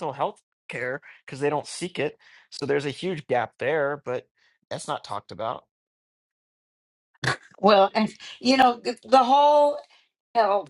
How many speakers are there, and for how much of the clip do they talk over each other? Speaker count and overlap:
two, no overlap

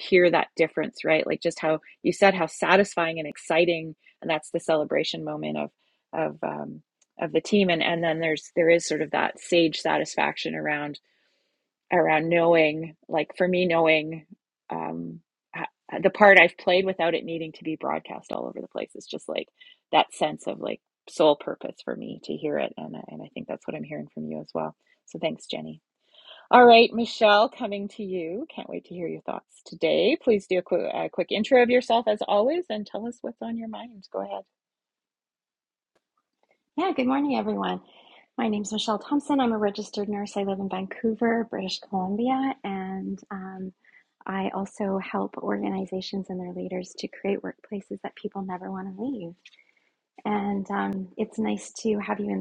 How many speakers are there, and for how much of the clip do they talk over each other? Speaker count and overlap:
two, no overlap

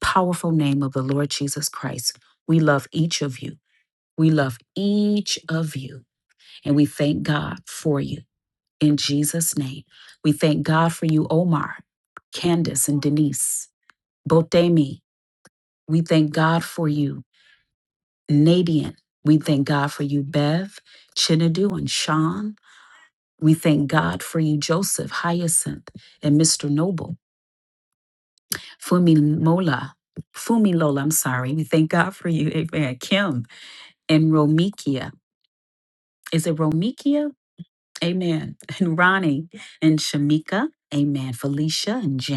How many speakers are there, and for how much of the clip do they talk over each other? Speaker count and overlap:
one, no overlap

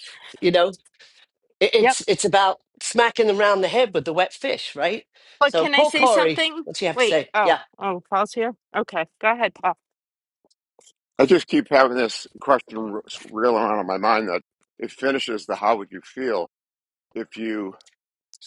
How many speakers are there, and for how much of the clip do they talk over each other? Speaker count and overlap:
three, about 11%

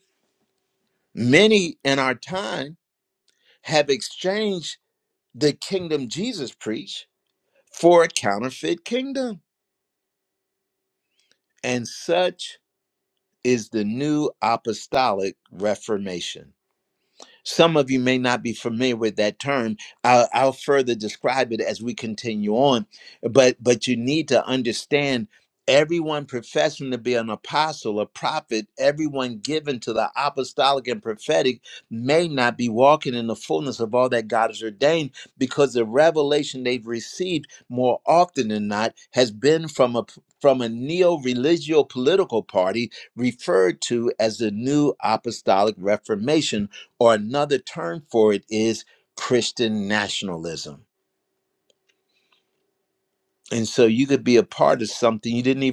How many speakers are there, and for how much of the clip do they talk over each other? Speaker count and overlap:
one, no overlap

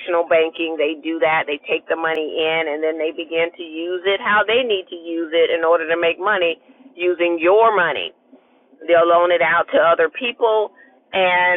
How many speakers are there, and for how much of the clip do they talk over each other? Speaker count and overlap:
one, no overlap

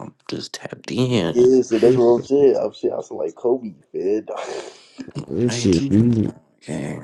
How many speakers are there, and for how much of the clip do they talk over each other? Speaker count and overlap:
three, about 10%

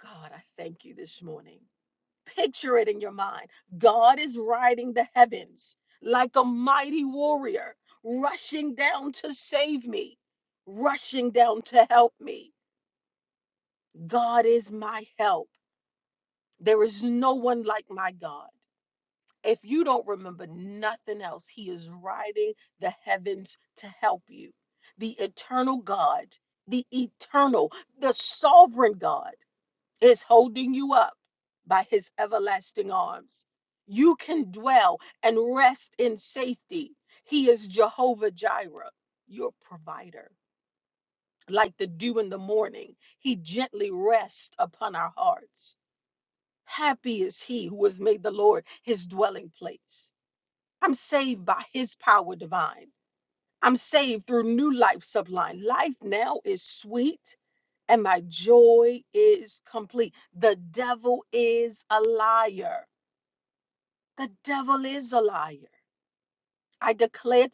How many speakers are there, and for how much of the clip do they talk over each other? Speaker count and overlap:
one, no overlap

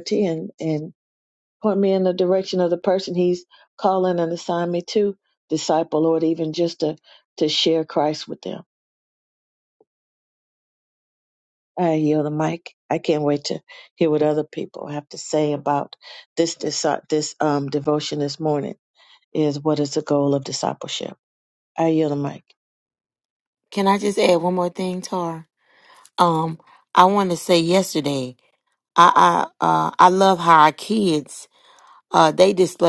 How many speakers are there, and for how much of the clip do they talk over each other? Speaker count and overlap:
two, no overlap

